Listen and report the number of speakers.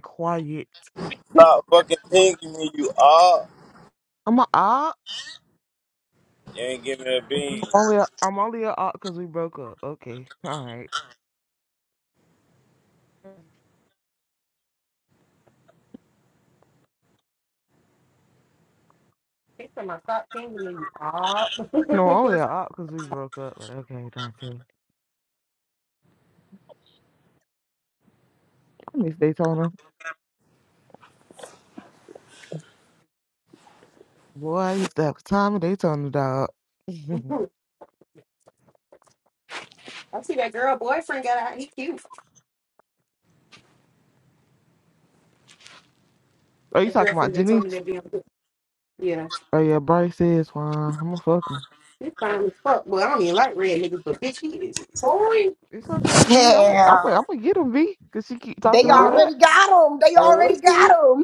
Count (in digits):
4